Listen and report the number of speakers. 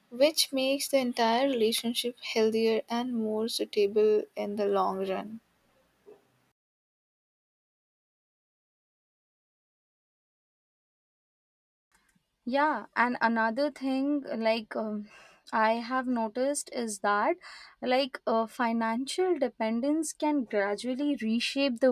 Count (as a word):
two